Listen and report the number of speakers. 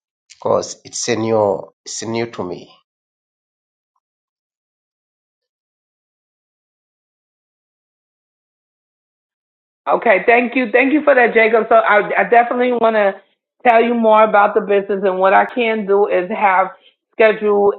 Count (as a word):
two